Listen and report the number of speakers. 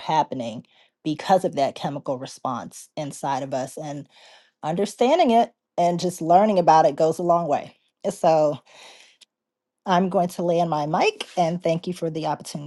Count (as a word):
one